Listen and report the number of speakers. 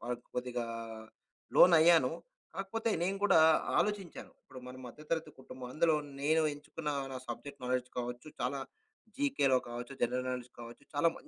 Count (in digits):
1